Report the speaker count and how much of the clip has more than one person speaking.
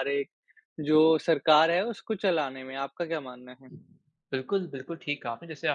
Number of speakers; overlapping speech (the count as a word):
two, no overlap